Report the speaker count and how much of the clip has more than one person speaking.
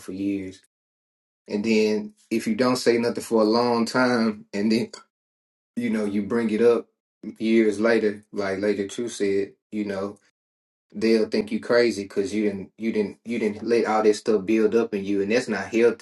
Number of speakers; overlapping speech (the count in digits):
1, no overlap